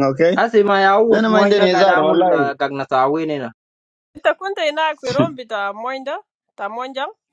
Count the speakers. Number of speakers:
3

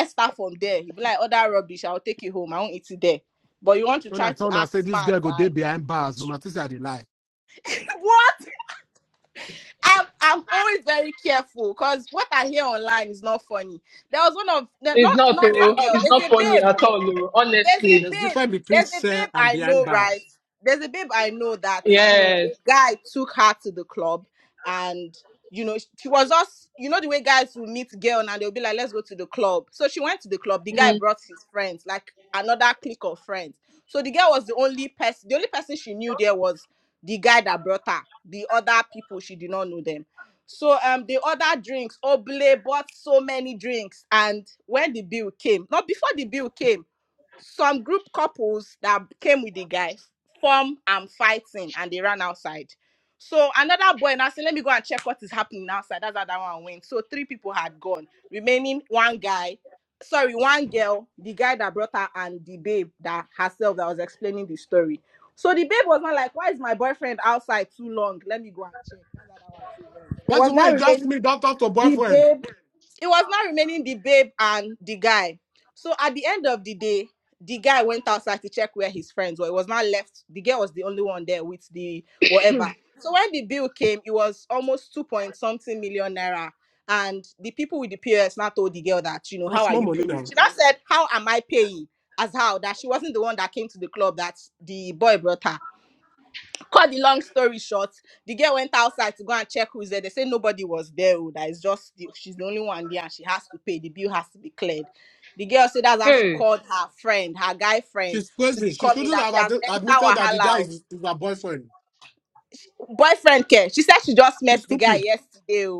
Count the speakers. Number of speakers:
3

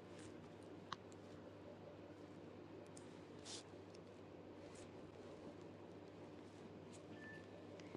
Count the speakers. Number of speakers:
0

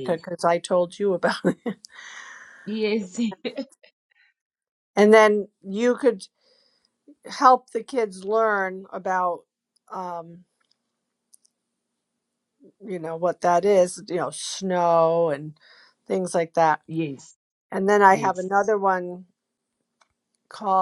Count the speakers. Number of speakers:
2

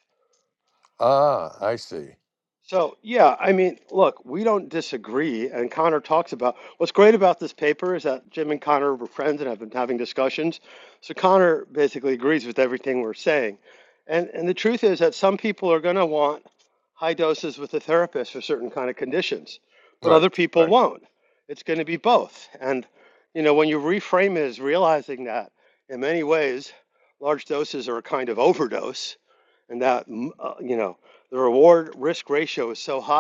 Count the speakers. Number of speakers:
2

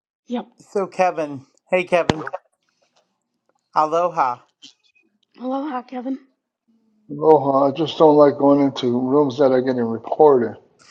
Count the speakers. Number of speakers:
3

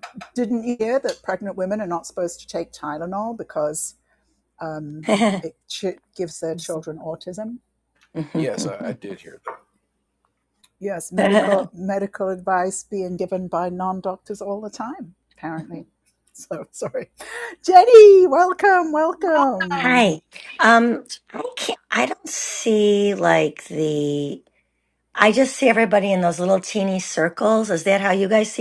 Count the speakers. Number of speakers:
3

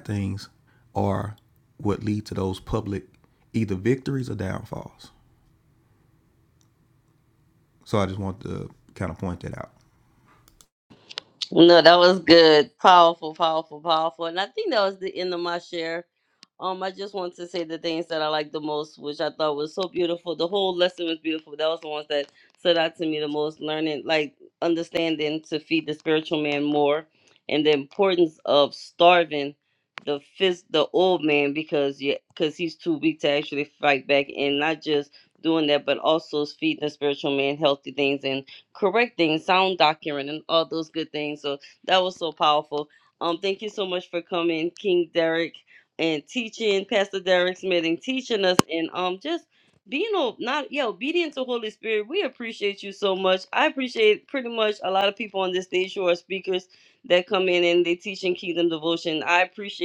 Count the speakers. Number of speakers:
2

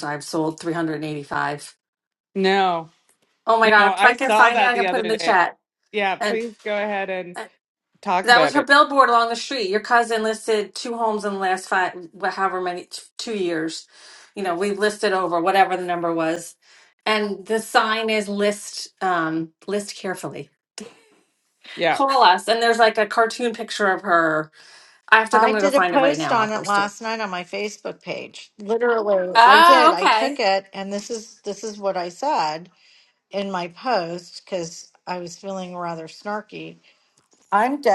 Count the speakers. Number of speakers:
3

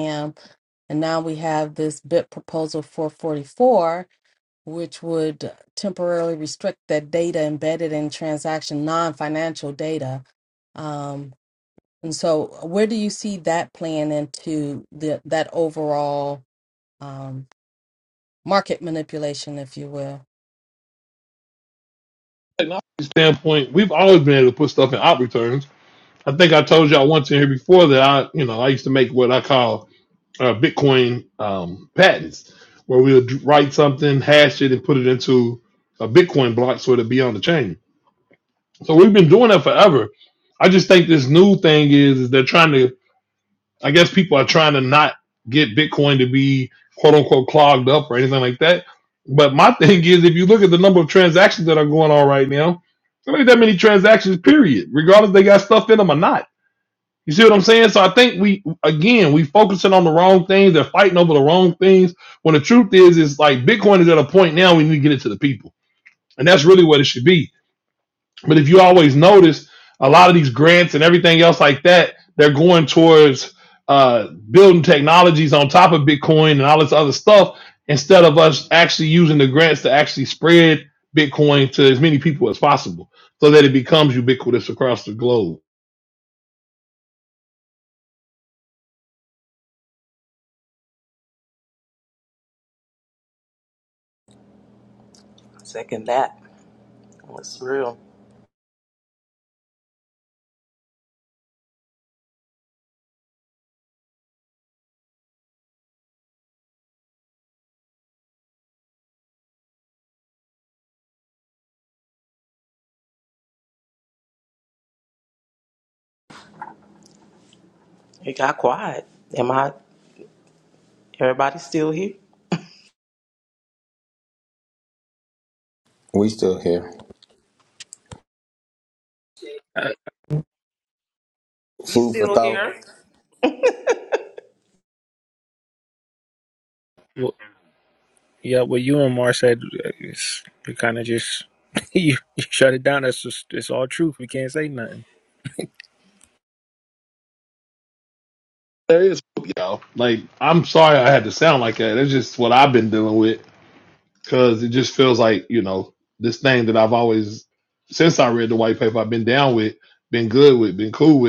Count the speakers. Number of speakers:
5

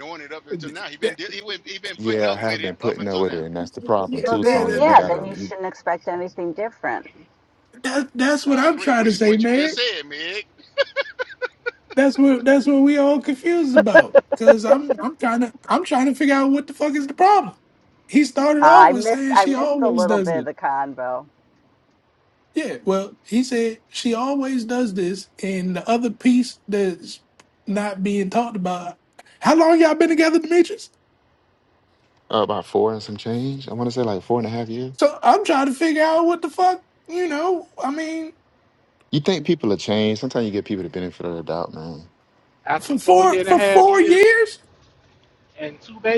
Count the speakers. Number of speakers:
5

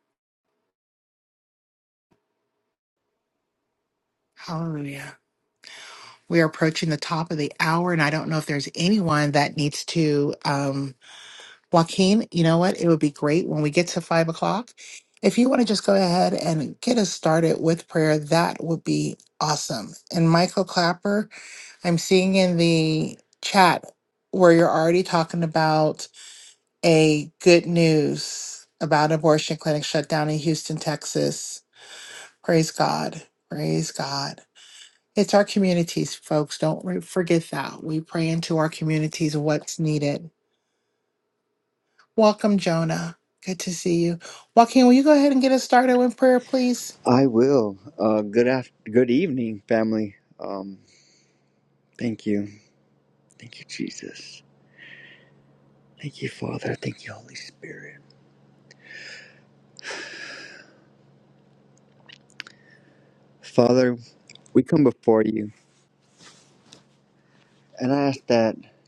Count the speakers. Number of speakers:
2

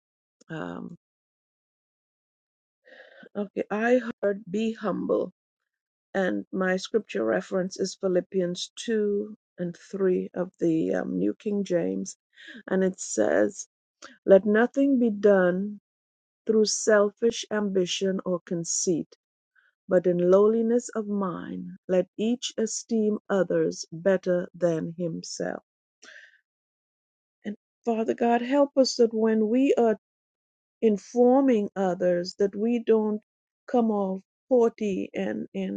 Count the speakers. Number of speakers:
1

